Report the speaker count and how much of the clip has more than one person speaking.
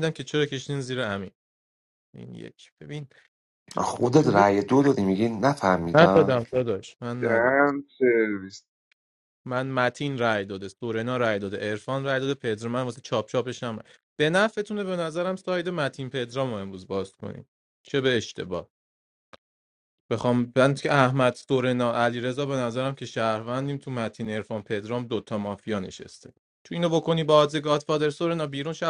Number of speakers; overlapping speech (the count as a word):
three, about 3%